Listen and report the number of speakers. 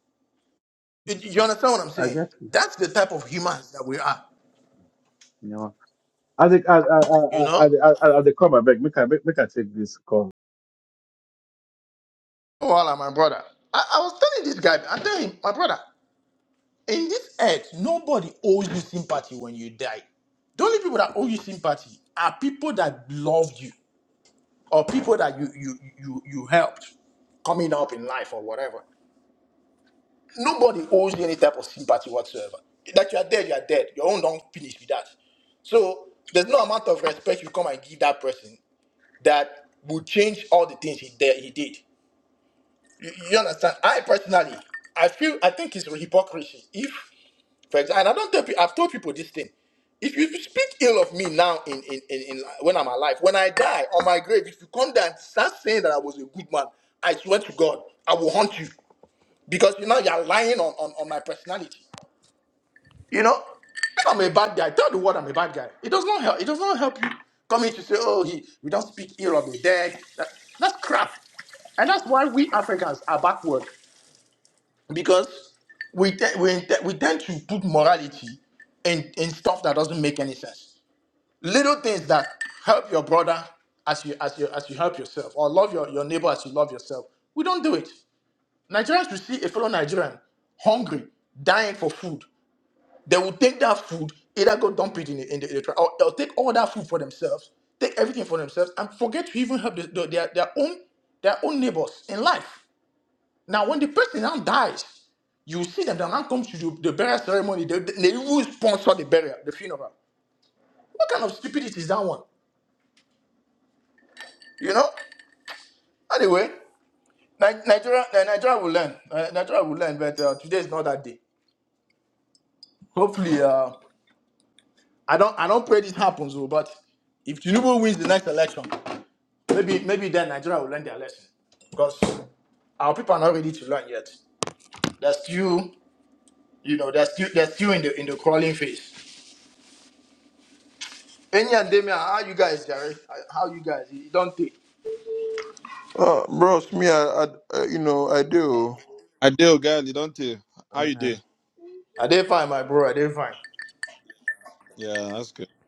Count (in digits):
4